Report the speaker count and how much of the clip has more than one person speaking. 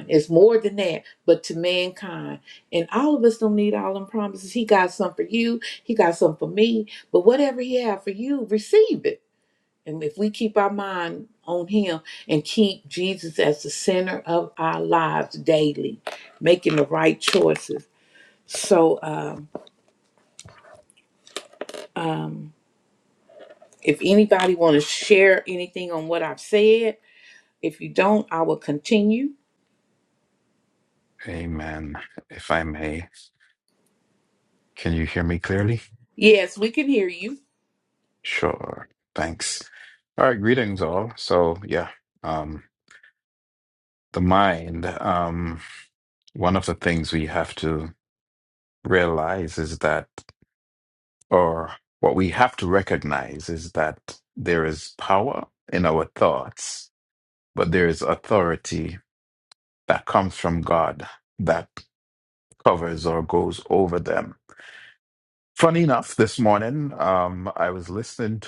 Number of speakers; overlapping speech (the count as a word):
two, no overlap